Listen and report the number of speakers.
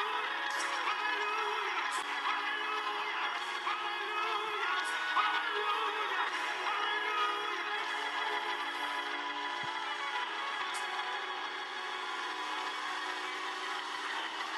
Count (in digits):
0